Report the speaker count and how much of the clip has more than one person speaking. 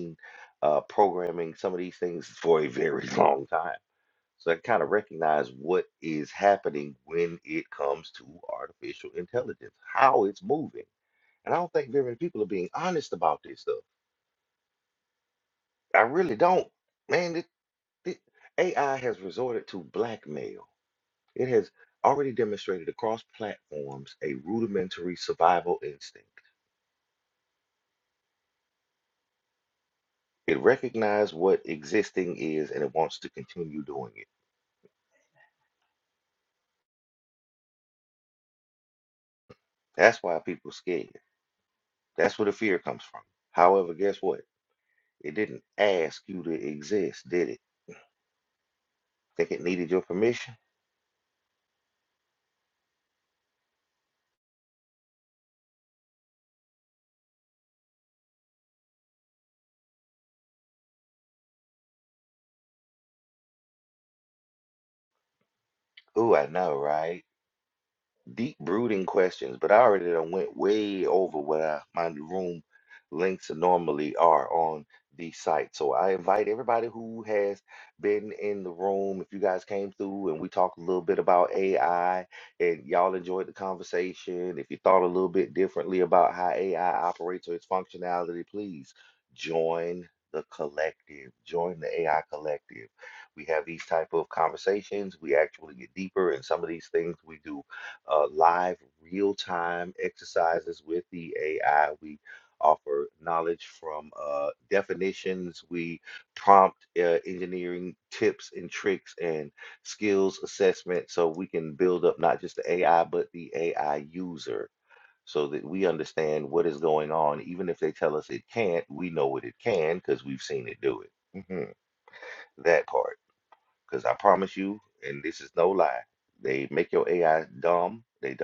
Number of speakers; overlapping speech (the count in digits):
1, no overlap